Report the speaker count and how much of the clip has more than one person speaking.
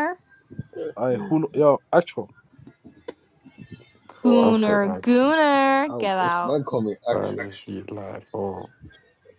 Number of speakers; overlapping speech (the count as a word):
four, about 20%